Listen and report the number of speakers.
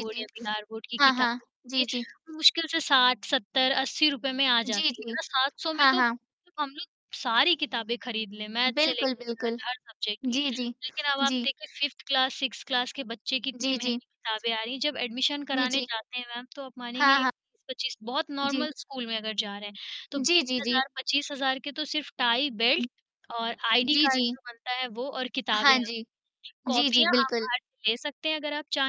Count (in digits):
2